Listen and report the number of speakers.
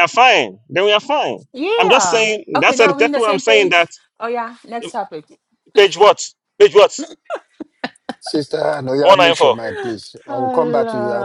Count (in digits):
3